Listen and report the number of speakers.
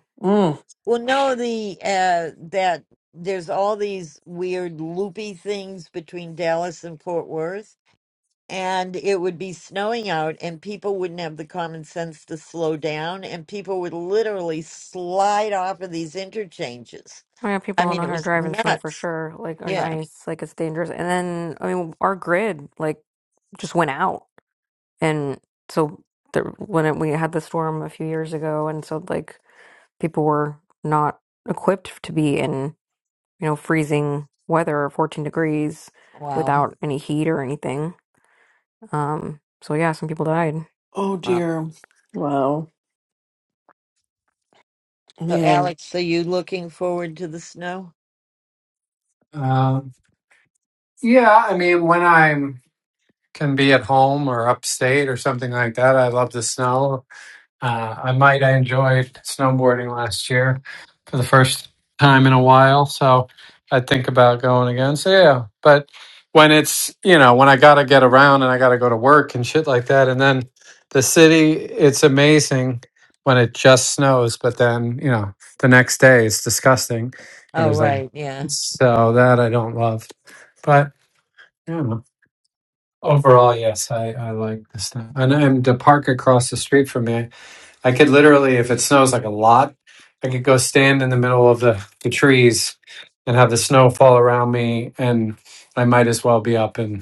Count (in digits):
4